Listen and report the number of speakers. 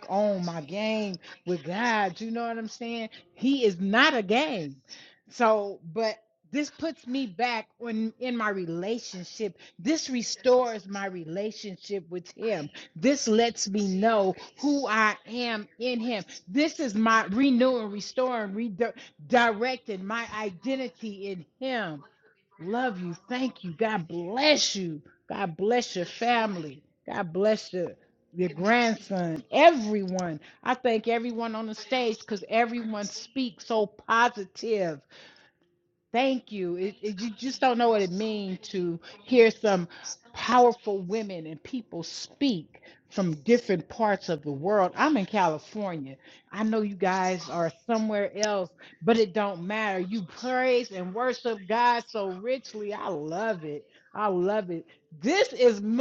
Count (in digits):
1